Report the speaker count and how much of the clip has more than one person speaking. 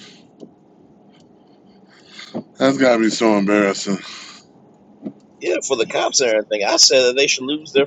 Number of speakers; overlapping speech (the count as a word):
two, no overlap